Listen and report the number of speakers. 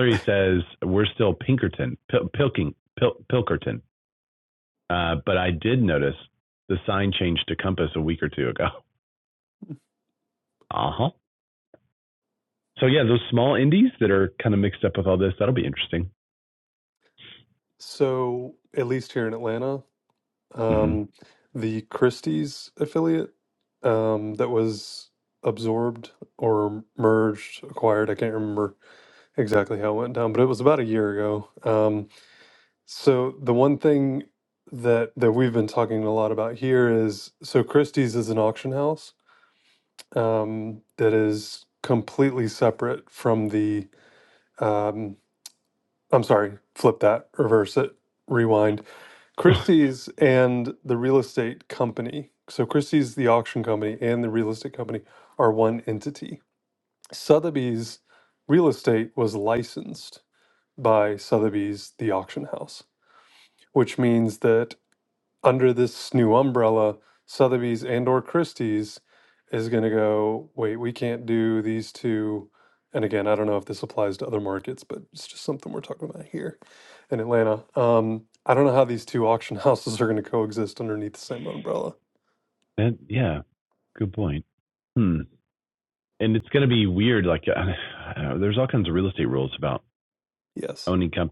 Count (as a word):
two